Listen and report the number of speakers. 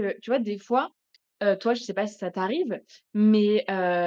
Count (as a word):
one